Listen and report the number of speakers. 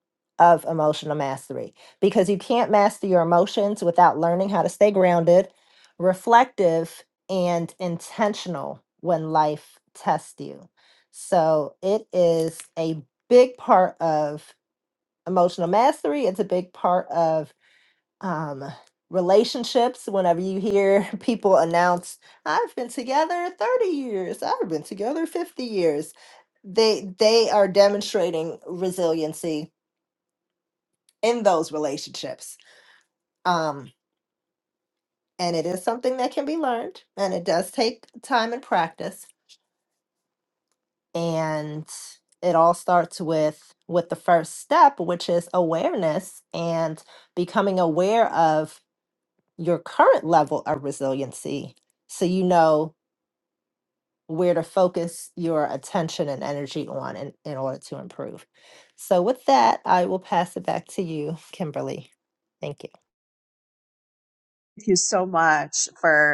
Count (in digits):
2